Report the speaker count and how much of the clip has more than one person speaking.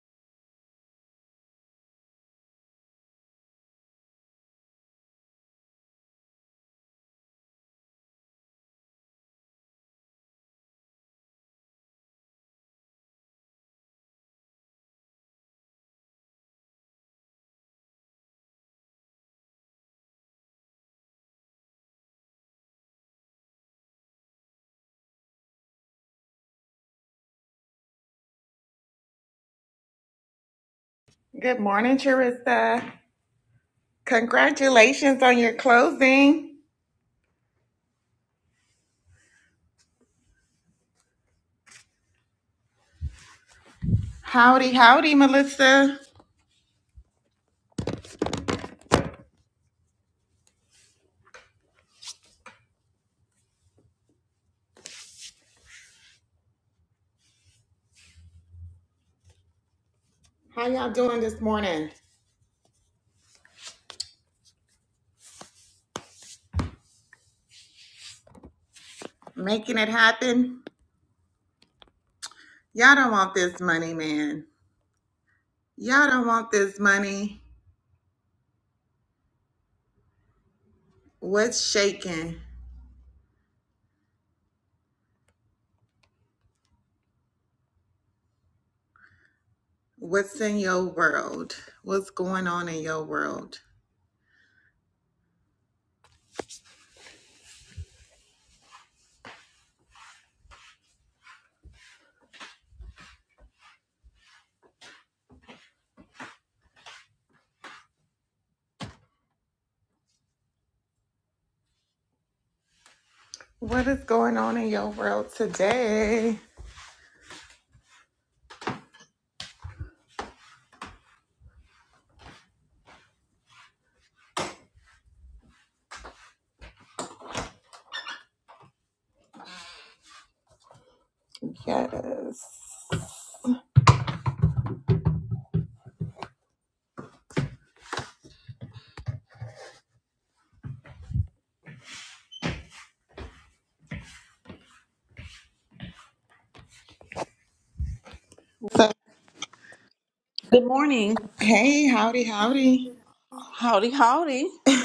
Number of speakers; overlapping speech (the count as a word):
two, no overlap